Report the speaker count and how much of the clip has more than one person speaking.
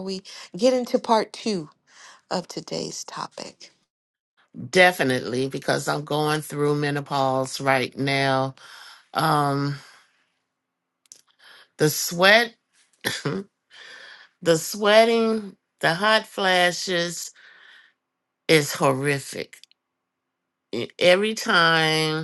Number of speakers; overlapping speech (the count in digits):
2, no overlap